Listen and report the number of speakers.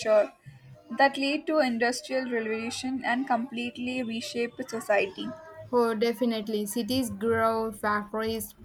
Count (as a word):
two